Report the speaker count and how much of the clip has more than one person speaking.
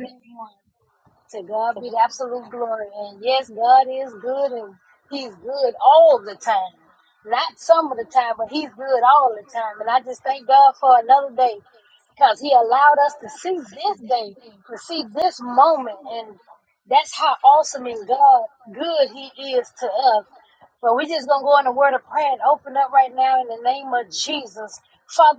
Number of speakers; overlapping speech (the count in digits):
1, no overlap